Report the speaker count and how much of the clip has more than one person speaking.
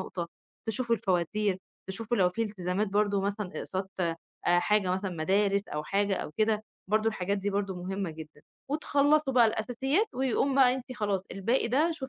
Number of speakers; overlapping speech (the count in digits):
1, no overlap